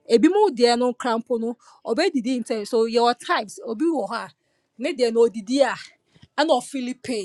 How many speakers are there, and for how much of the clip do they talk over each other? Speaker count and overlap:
1, no overlap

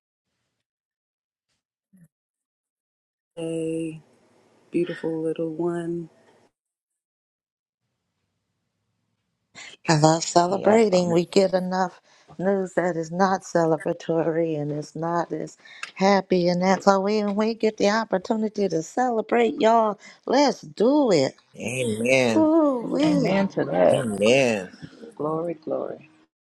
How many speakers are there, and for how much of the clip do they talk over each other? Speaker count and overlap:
4, about 6%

